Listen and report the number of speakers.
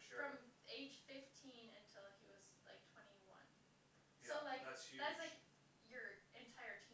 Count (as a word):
two